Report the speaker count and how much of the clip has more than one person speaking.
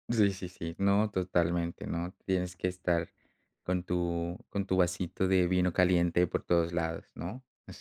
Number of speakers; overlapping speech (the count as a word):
one, no overlap